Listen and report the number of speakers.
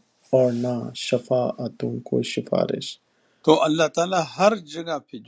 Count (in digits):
2